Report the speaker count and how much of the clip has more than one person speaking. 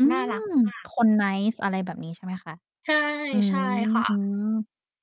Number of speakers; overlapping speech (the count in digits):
2, about 13%